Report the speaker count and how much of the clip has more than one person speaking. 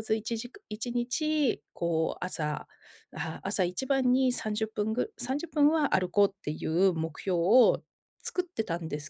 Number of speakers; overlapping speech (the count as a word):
one, no overlap